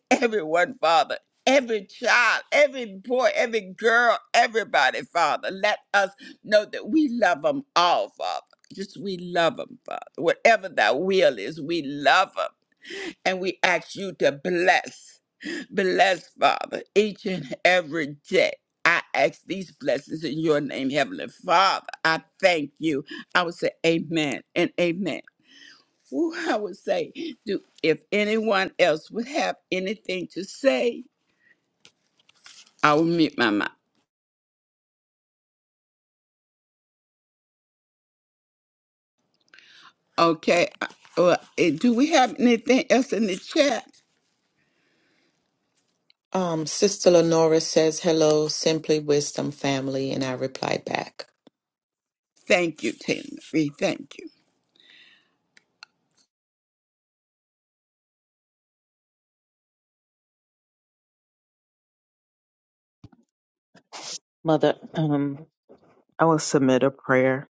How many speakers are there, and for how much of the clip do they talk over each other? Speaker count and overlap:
3, no overlap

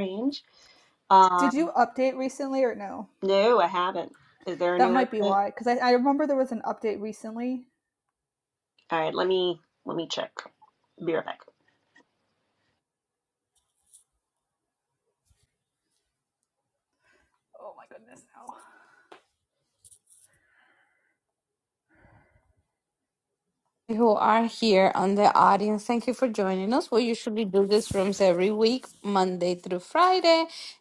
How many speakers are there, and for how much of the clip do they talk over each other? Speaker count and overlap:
3, about 2%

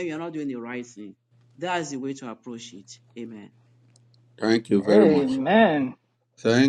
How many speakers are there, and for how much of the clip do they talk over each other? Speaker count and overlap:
3, about 8%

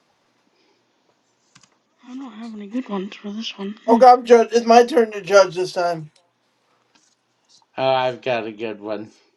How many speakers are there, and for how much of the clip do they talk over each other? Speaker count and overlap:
3, no overlap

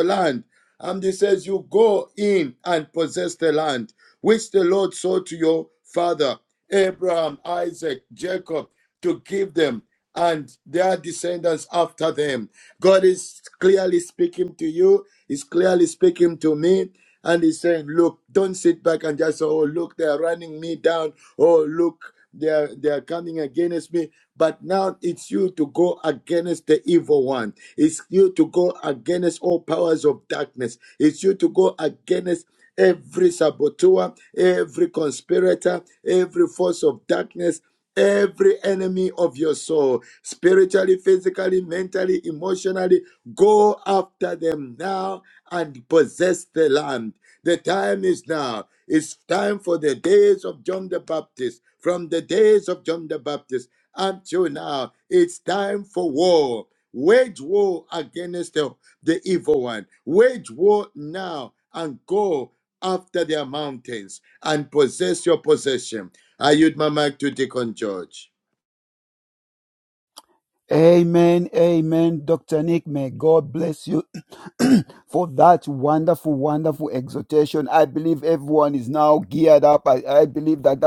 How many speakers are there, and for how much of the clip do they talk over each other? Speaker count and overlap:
2, no overlap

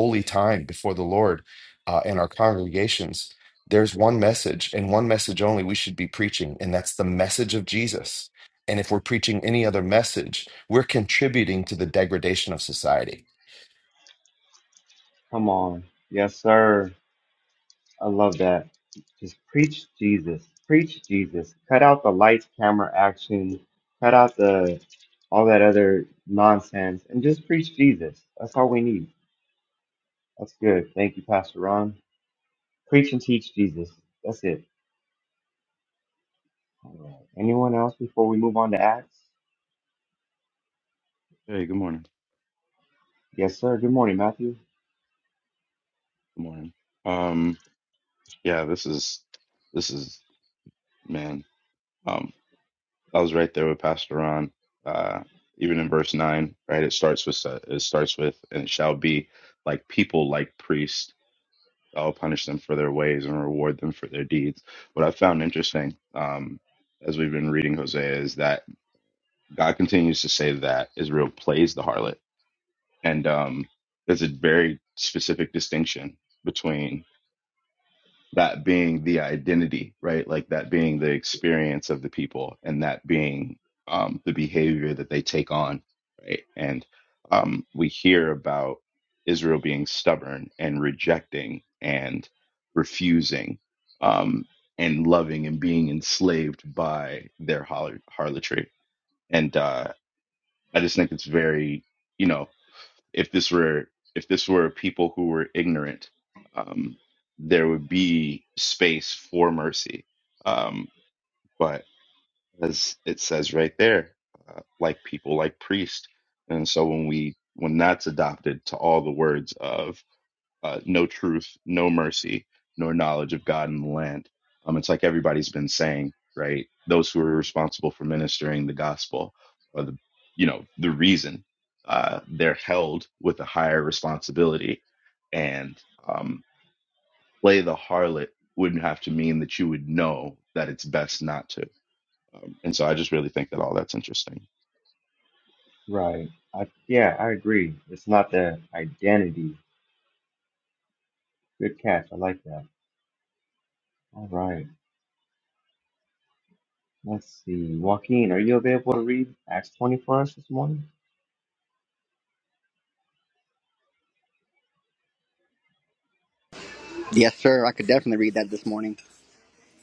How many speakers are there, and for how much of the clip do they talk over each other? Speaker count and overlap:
4, no overlap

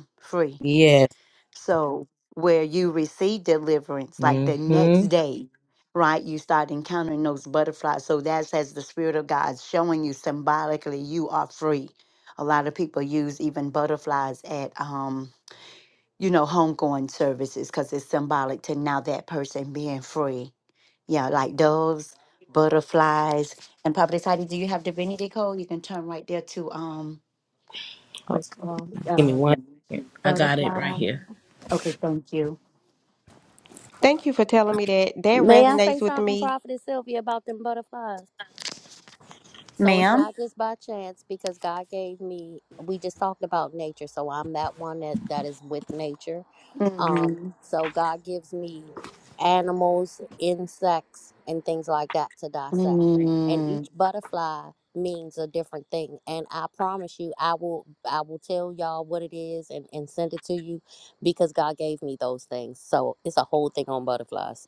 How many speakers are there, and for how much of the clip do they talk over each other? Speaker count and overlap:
4, about 7%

